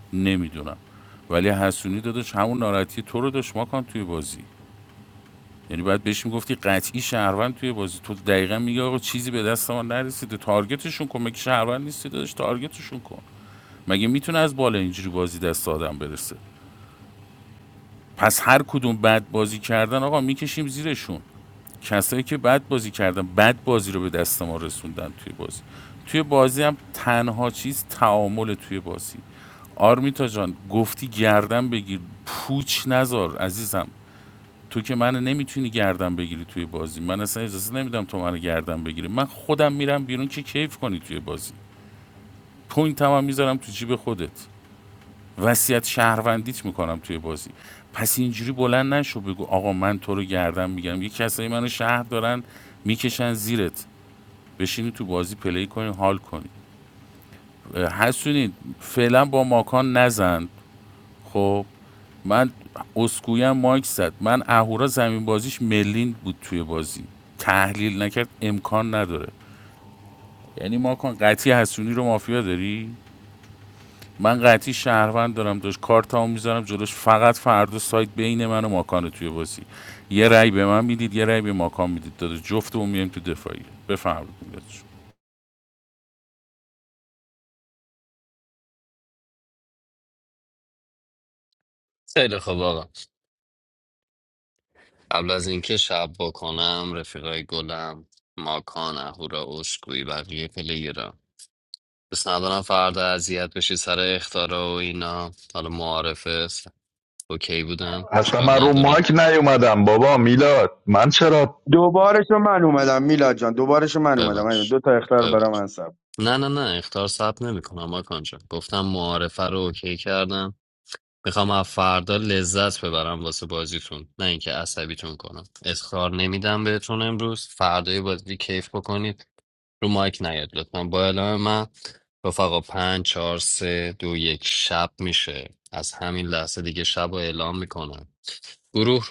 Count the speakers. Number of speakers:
four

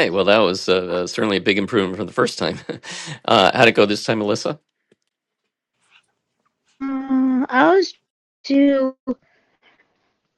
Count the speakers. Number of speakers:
two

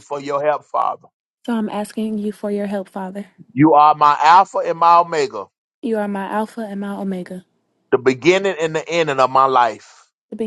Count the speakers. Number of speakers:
two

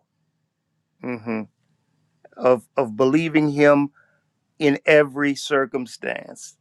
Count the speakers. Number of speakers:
one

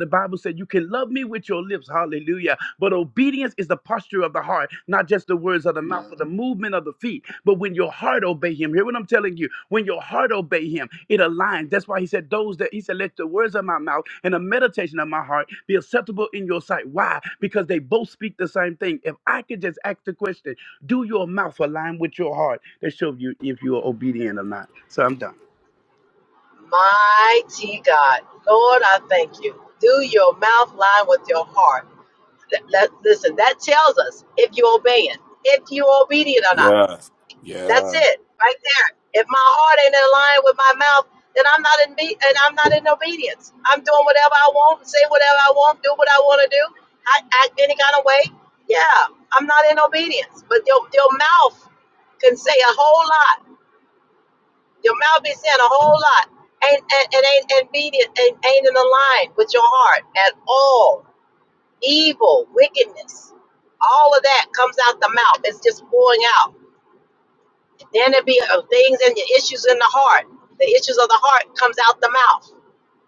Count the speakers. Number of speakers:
three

